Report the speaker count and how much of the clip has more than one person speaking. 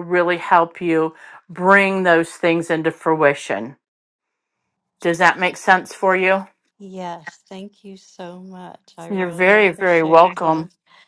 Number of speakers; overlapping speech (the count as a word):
two, about 14%